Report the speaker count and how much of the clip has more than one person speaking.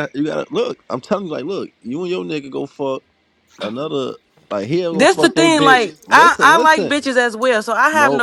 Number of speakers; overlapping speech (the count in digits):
2, about 29%